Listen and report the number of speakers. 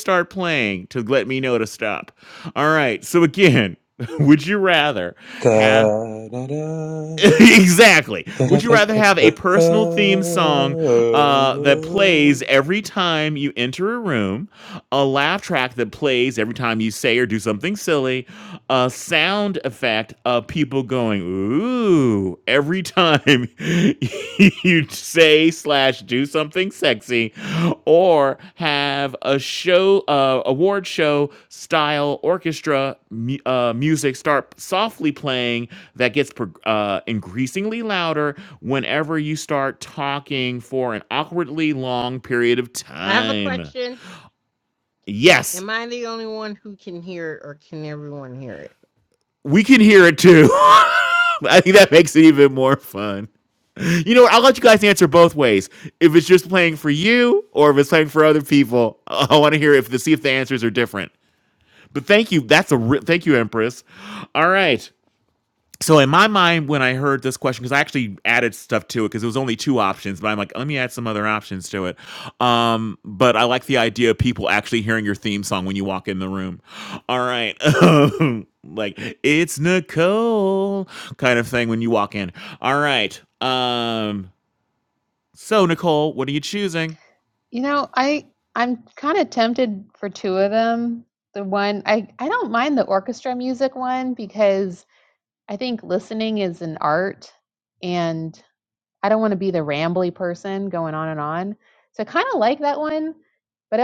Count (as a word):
four